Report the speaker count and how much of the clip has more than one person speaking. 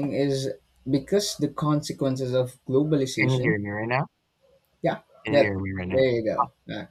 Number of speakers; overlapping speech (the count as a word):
two, about 12%